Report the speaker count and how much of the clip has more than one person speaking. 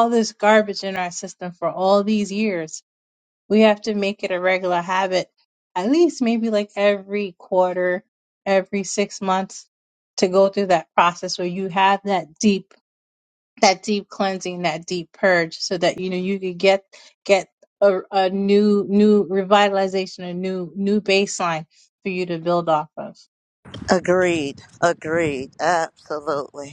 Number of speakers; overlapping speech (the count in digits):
2, no overlap